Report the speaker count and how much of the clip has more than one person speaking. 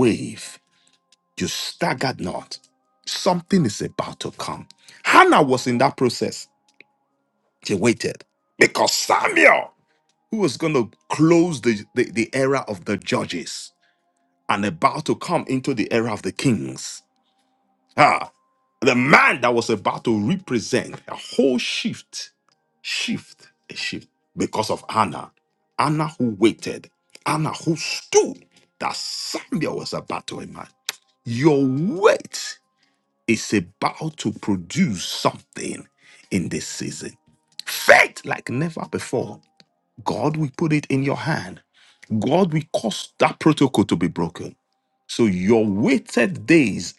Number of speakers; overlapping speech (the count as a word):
one, no overlap